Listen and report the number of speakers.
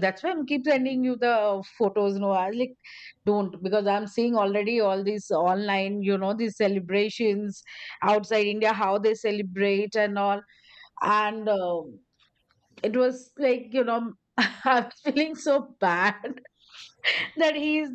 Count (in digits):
1